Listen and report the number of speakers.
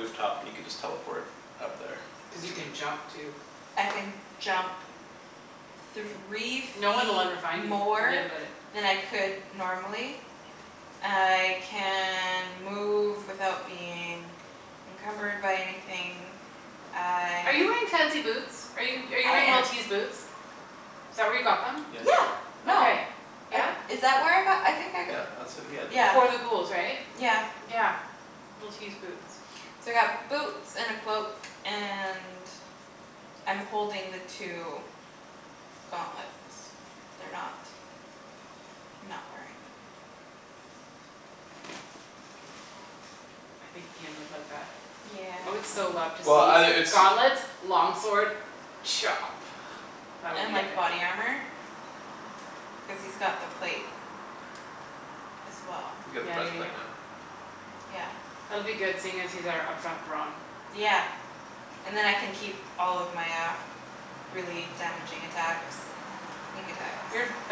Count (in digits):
3